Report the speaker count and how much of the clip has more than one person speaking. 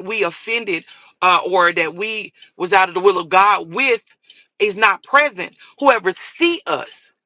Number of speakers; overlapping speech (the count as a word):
one, no overlap